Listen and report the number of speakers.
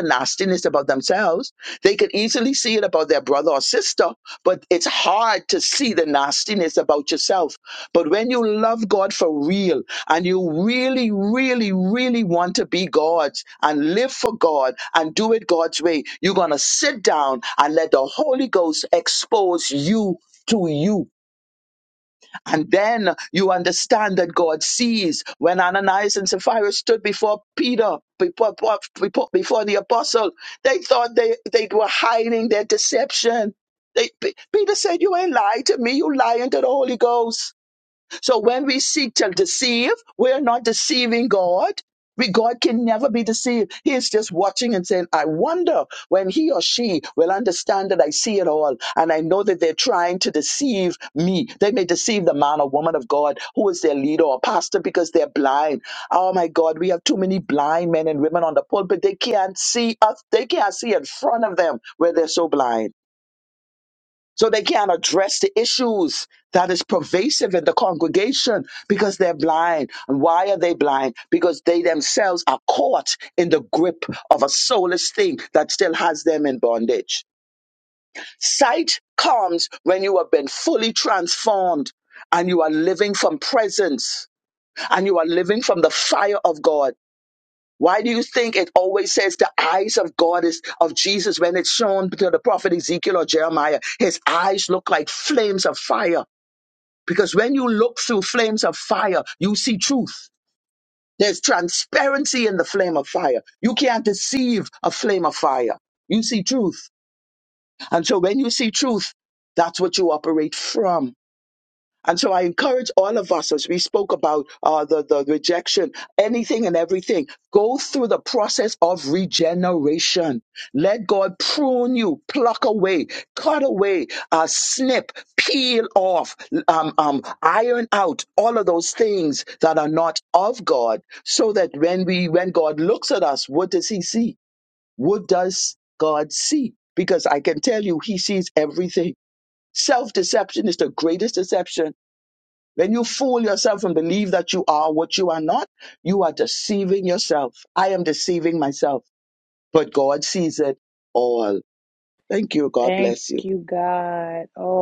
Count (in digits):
2